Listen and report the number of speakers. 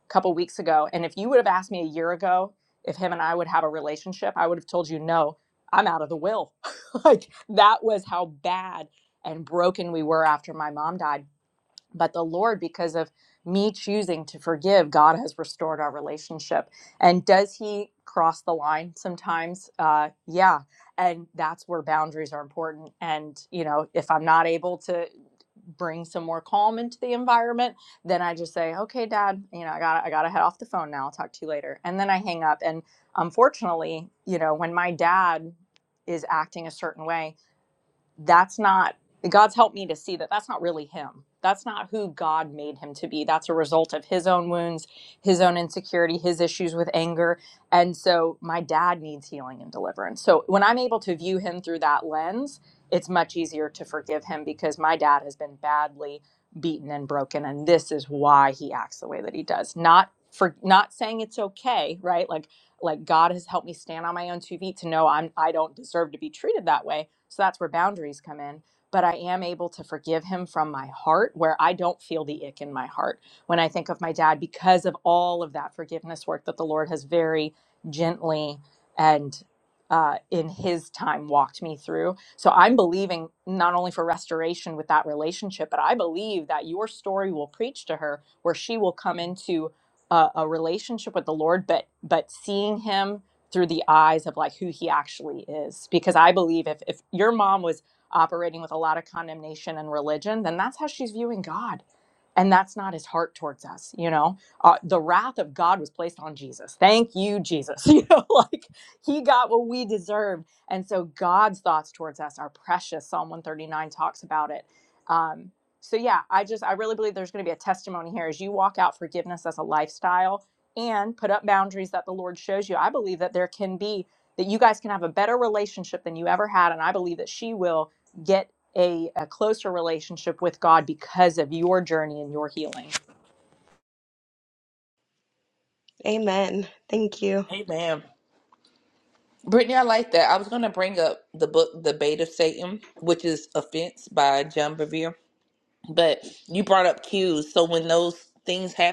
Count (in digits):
3